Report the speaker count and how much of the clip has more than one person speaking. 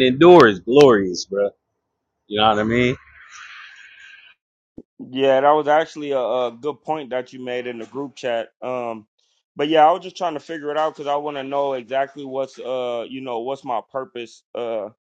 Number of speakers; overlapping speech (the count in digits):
2, no overlap